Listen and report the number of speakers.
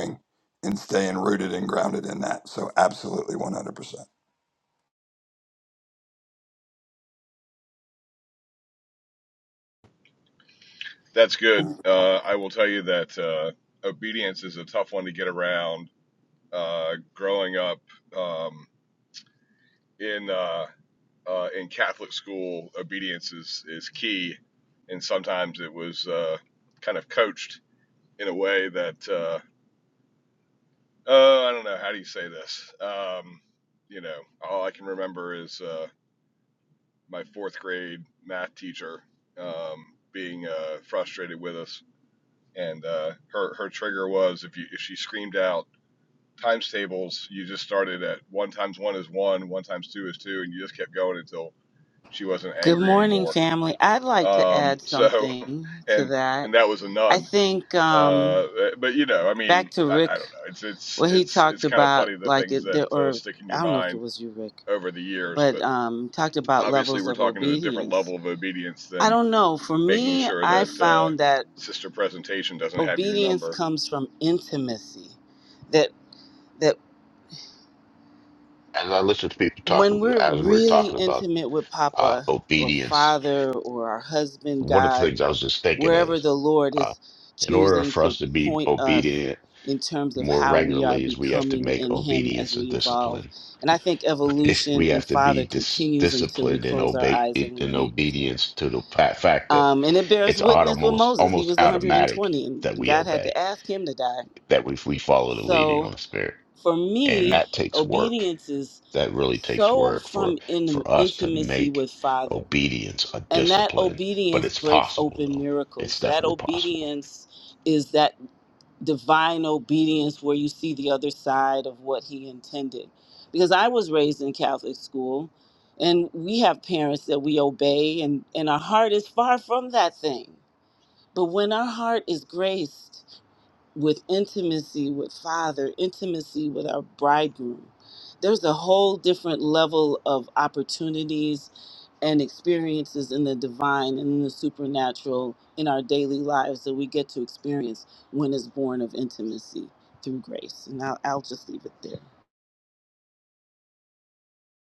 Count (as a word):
four